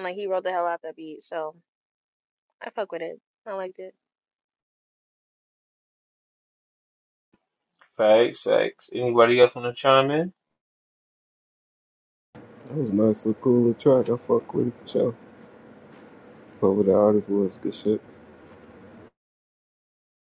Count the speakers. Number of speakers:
3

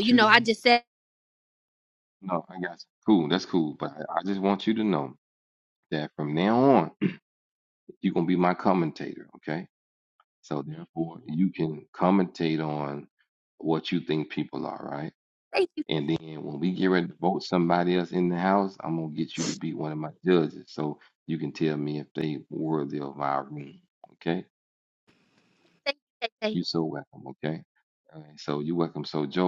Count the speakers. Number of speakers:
2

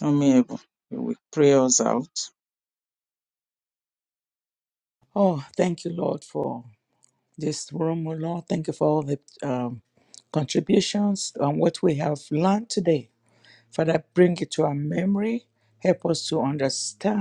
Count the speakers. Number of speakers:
2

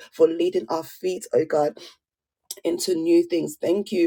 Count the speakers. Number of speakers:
1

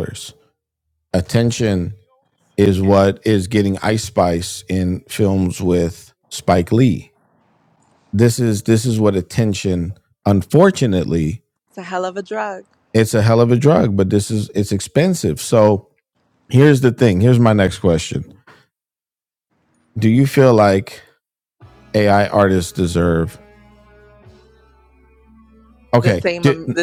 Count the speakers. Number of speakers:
2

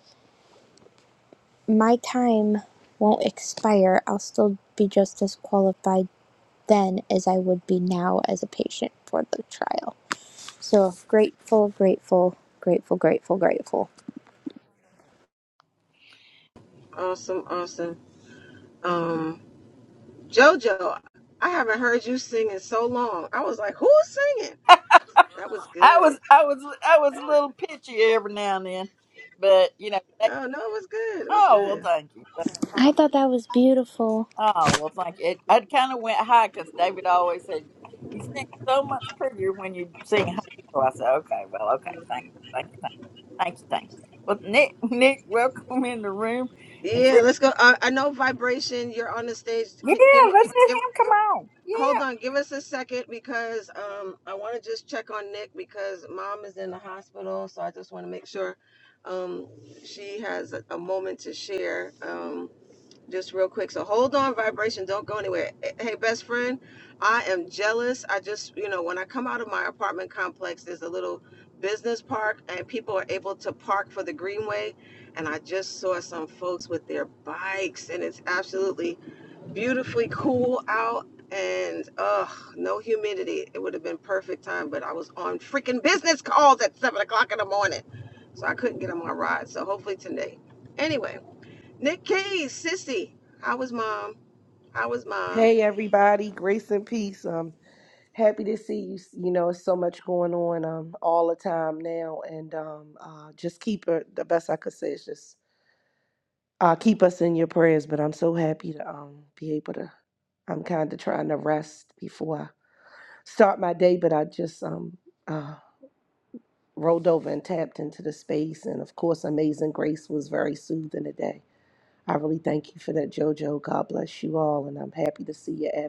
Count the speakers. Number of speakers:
4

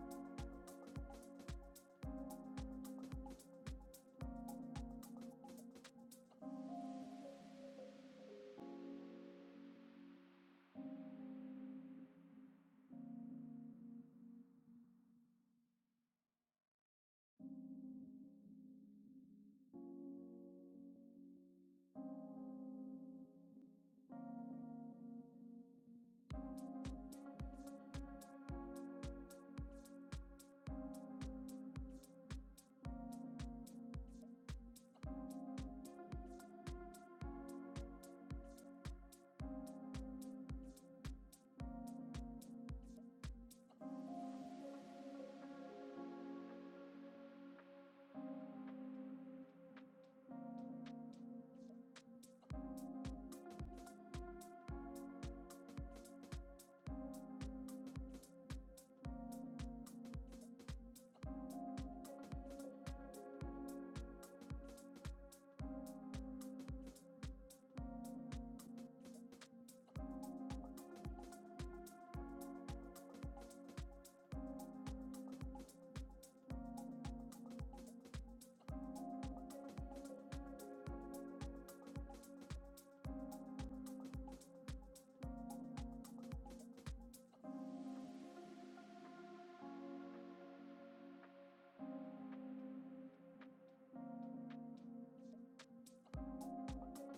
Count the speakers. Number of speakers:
0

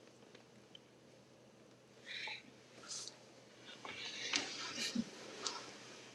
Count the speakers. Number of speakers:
0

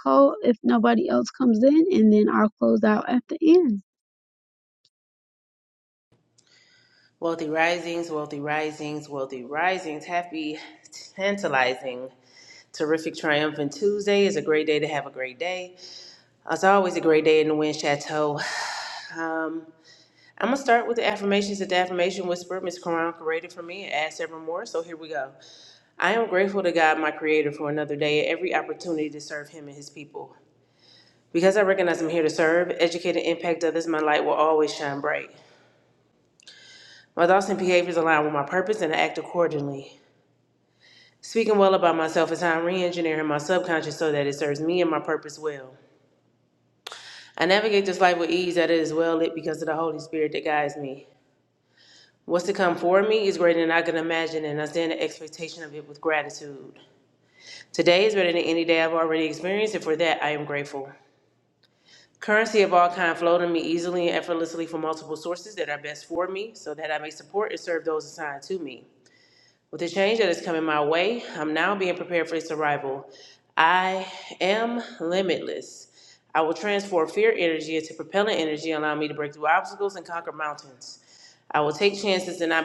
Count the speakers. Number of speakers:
2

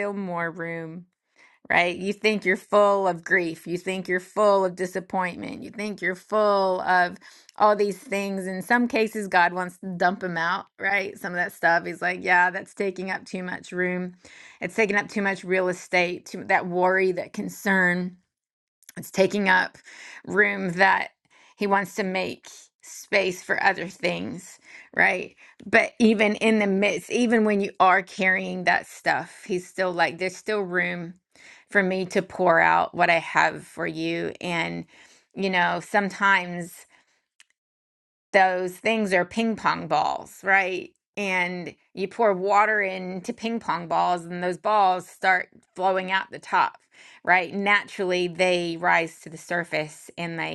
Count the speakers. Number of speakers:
1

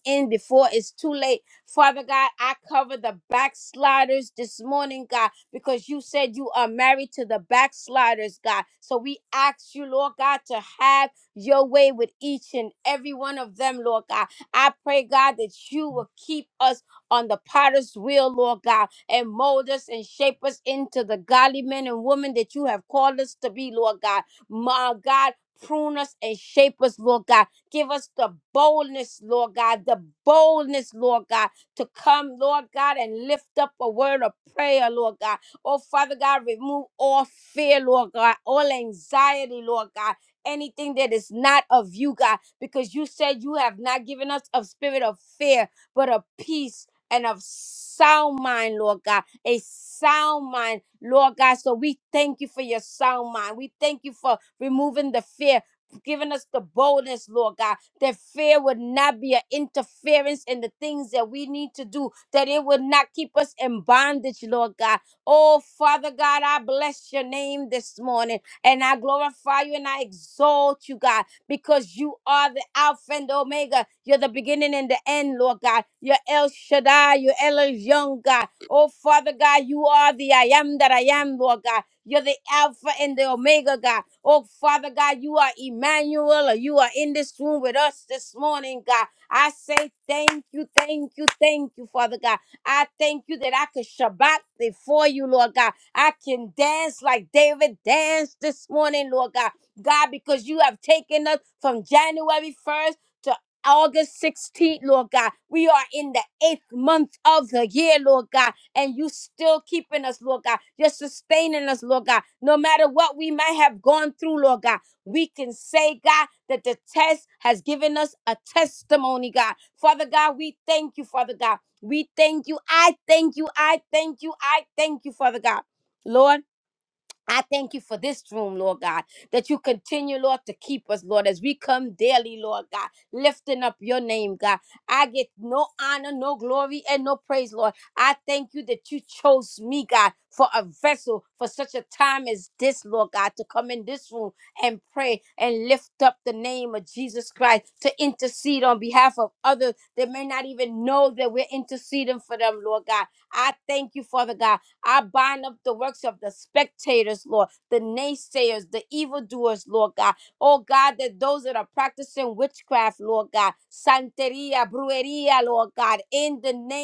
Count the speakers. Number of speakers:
1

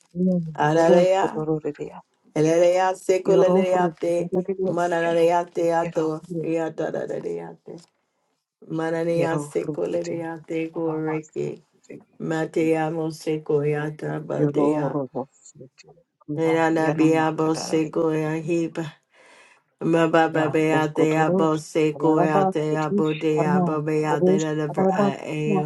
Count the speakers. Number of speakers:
2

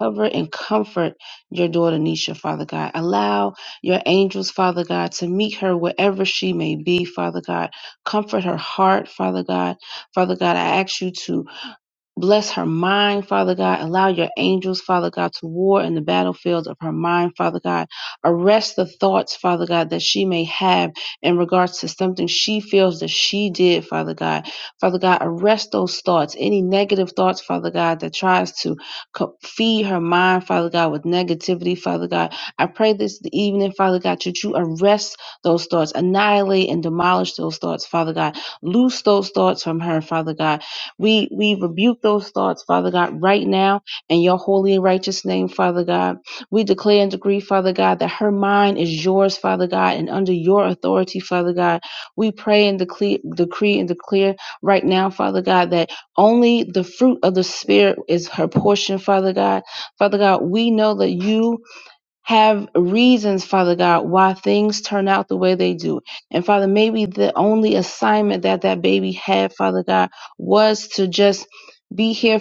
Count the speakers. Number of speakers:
1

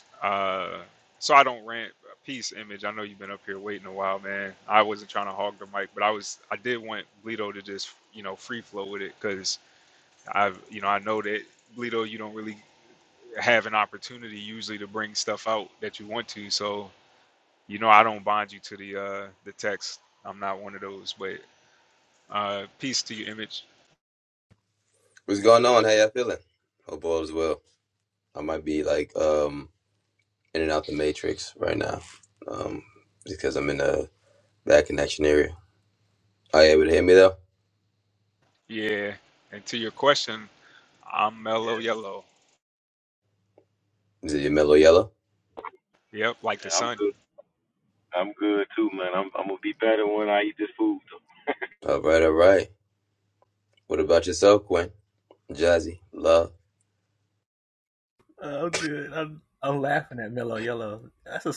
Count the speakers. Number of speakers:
4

